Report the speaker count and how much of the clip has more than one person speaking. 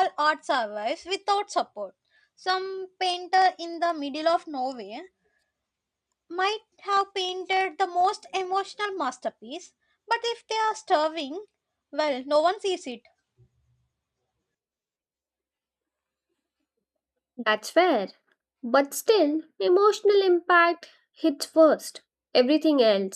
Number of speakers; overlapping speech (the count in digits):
2, no overlap